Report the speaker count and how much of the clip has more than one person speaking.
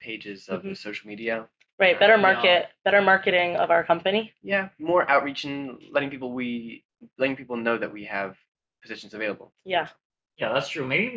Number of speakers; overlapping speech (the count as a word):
three, about 8%